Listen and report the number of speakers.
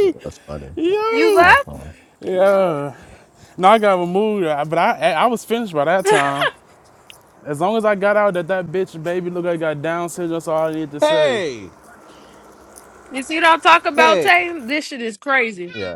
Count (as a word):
three